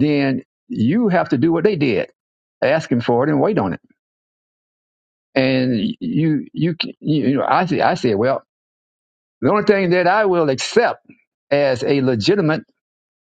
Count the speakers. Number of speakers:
1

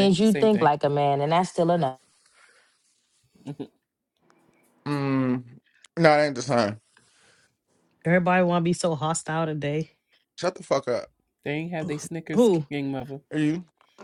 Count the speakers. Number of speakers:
4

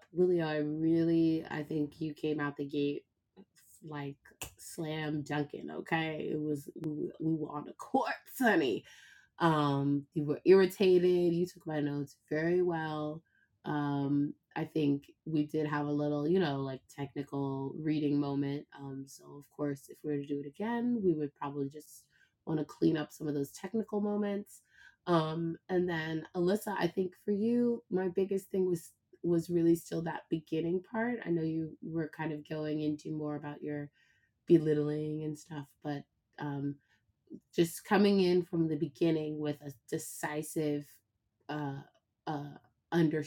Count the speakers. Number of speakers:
1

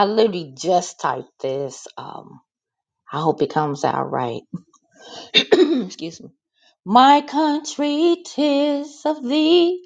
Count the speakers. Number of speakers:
1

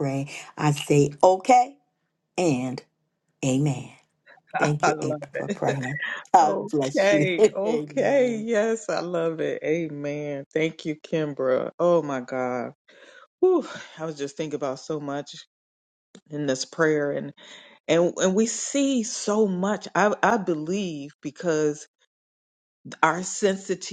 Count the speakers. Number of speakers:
2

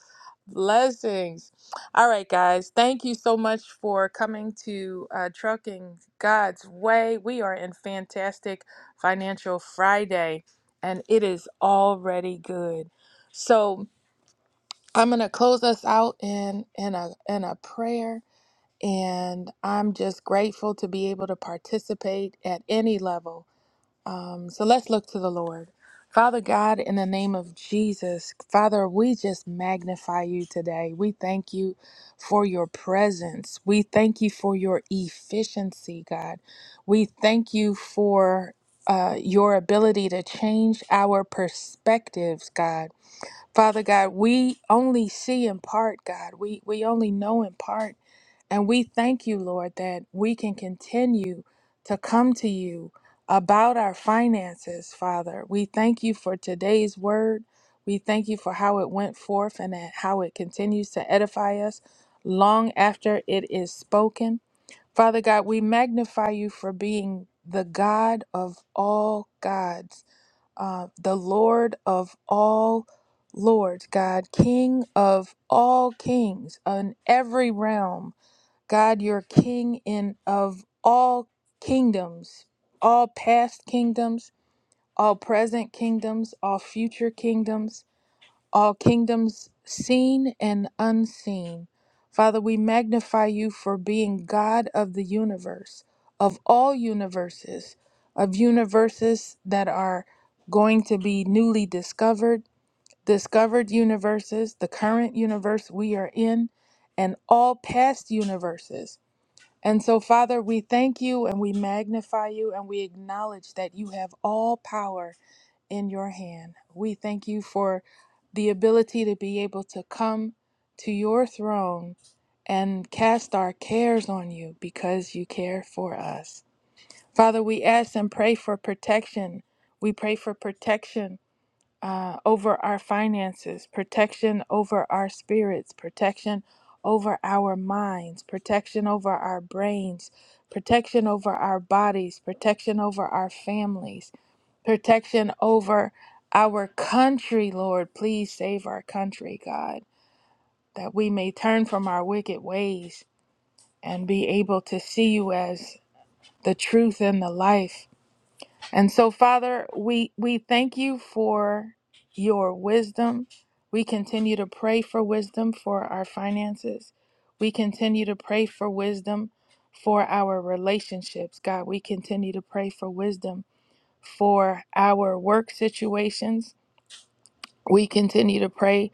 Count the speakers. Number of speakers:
1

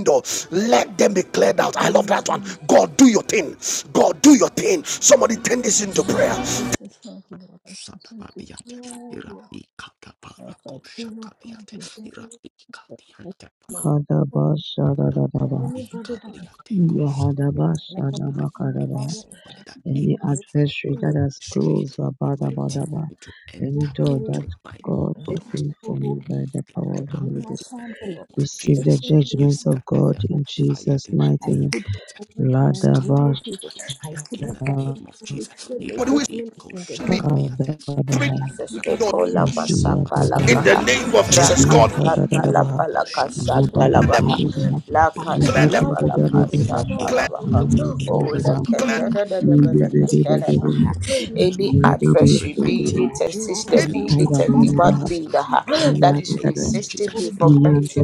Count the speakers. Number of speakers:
5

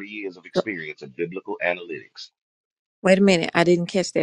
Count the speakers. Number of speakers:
2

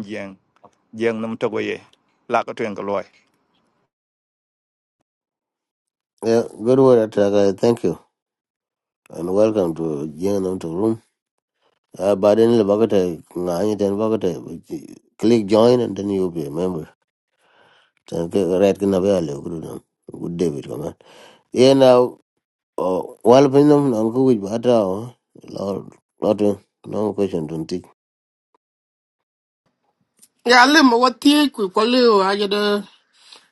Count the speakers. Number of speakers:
3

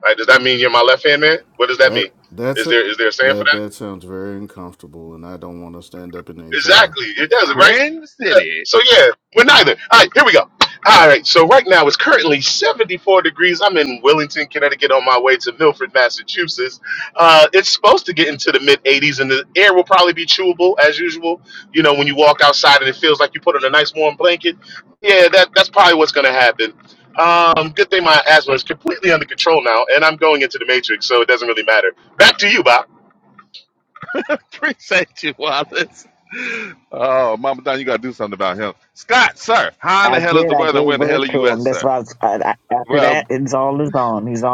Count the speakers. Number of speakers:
4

